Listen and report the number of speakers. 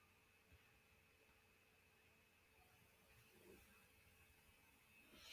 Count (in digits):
0